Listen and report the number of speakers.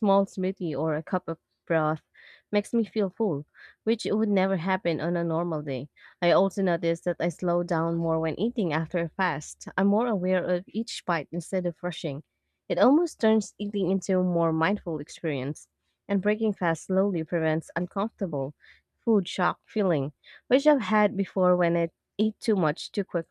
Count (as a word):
one